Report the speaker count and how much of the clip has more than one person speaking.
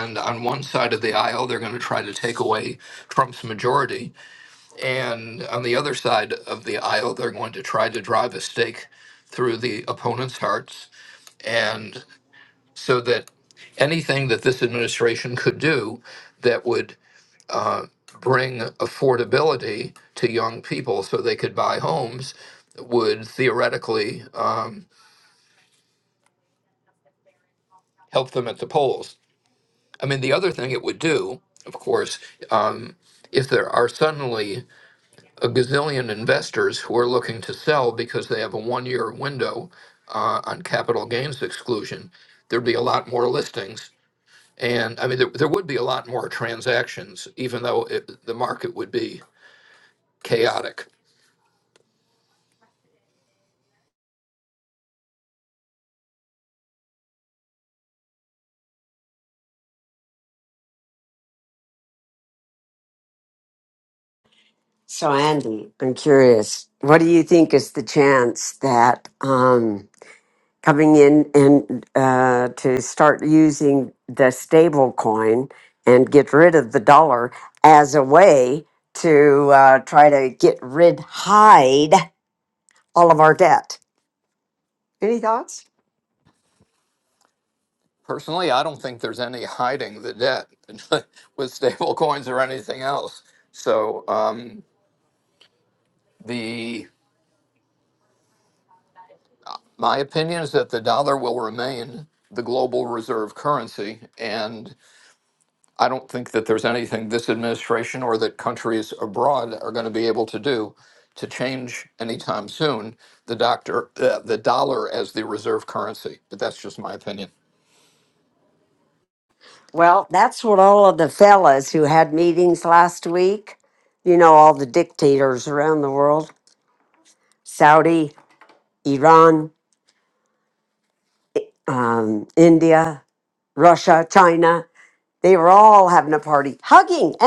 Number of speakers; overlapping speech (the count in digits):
2, no overlap